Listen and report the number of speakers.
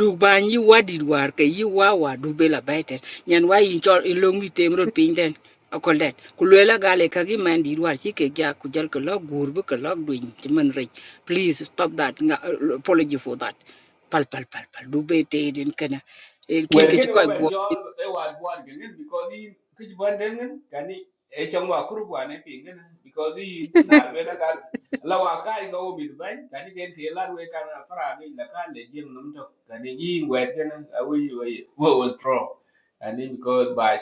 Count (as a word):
two